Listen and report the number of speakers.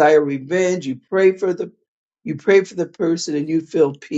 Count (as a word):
one